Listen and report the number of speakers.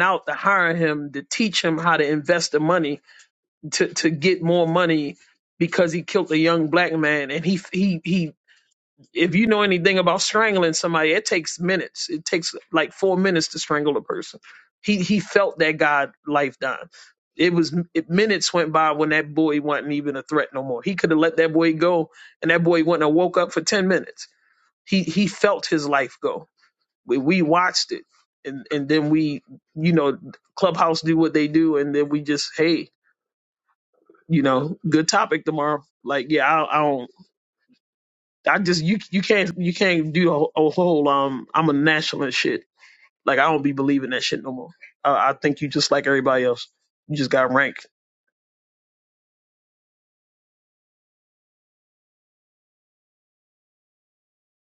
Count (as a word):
one